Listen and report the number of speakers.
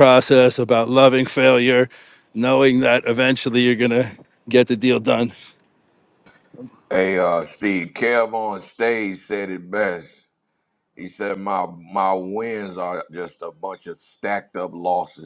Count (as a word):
two